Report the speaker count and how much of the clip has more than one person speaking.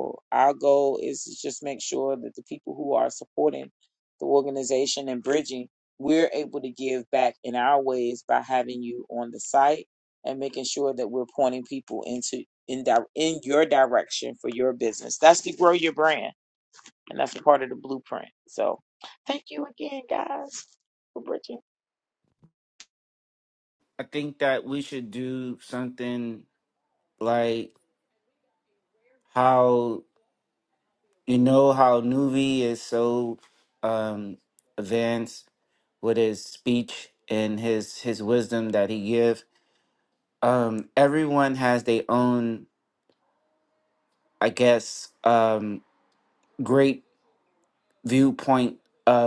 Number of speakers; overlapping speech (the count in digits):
2, no overlap